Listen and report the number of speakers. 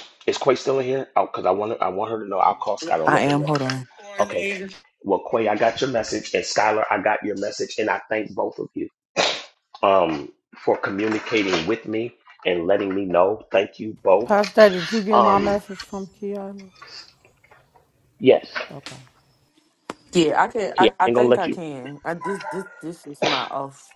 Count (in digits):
3